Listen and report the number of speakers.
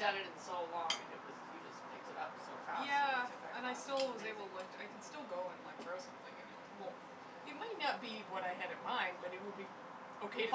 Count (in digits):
2